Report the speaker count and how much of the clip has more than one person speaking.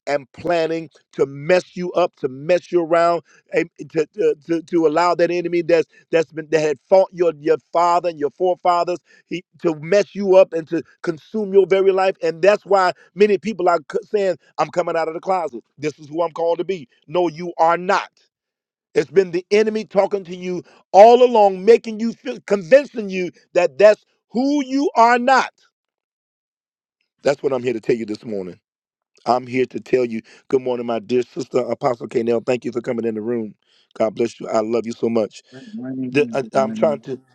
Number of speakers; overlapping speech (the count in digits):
2, about 2%